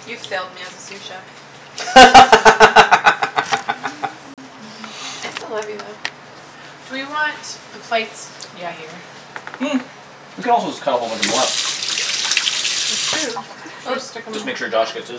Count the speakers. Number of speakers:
three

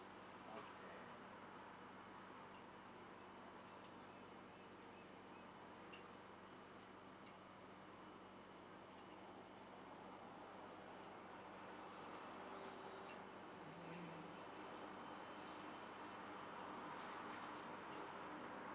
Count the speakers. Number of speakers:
one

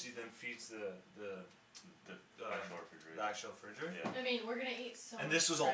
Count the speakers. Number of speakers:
three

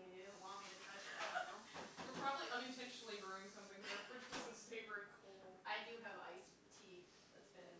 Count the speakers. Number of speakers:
two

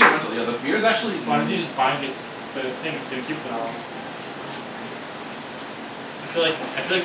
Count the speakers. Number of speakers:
two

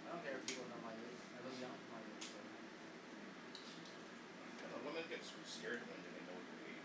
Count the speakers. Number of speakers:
two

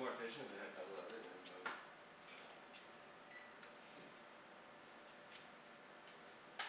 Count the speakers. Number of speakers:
one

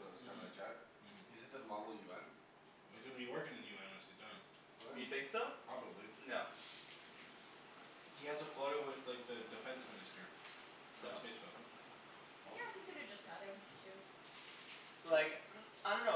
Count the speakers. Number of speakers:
four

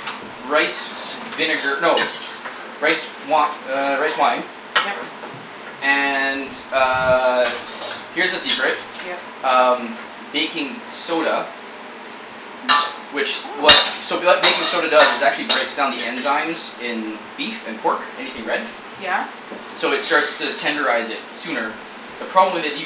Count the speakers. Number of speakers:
two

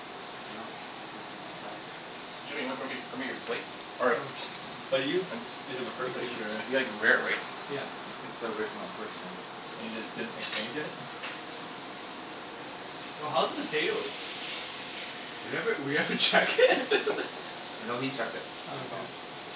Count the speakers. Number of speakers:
four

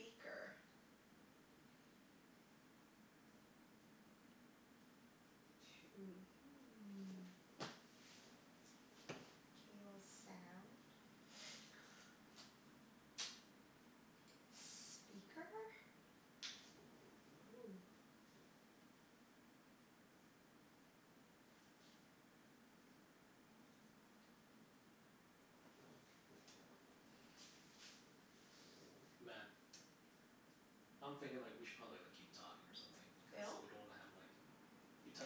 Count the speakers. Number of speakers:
two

